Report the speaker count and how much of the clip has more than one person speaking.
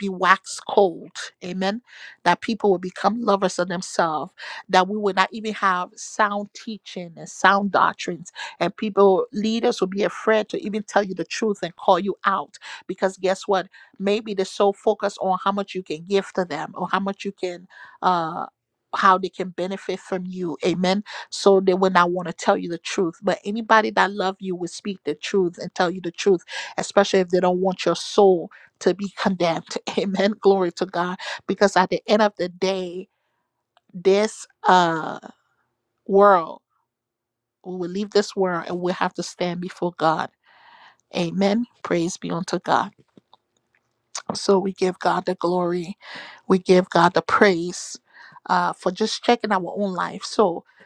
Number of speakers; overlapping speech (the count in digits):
1, no overlap